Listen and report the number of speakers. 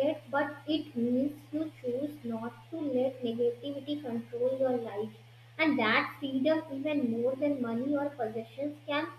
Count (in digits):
1